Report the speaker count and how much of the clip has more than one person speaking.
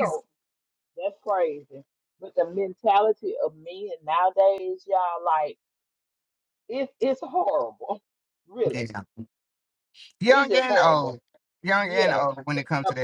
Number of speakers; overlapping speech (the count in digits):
2, about 17%